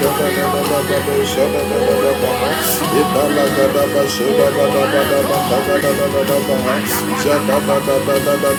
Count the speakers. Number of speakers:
0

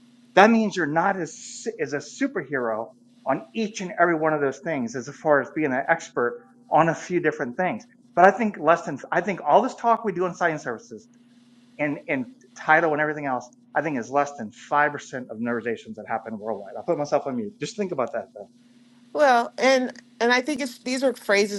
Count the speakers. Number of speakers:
2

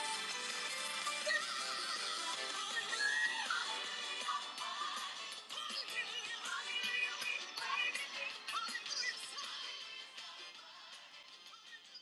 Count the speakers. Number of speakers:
0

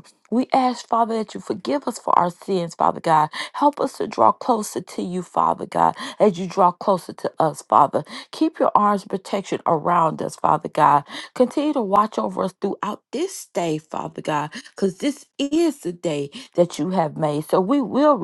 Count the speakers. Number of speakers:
1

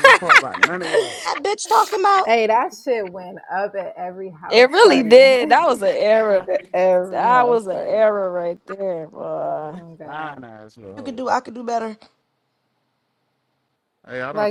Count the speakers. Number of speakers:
4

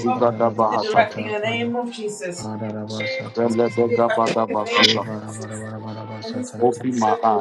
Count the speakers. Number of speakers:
3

